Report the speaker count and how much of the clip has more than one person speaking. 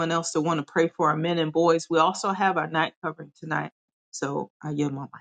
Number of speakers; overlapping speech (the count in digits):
1, no overlap